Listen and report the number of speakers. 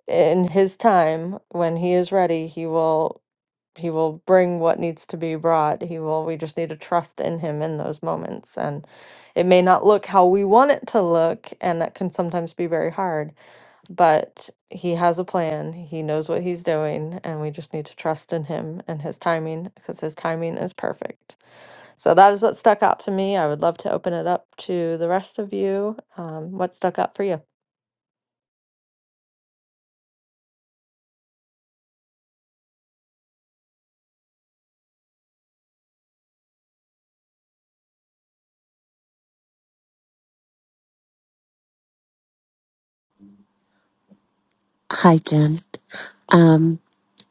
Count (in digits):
2